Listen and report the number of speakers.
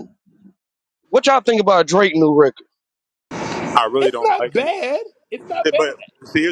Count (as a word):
three